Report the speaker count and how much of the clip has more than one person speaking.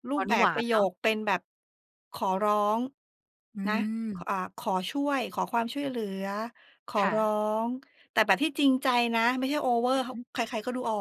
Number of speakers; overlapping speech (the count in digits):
2, about 11%